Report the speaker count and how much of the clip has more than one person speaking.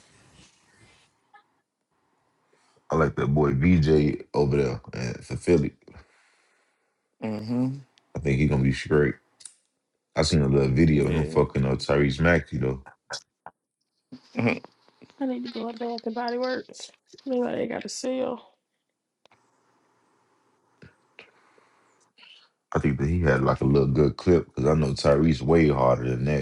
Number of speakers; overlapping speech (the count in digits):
3, about 2%